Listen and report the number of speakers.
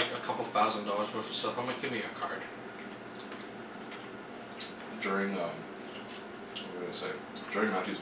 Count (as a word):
two